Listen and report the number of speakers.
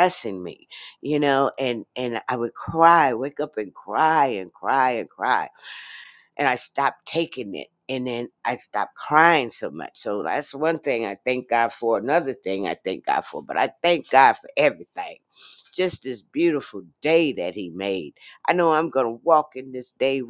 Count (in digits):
1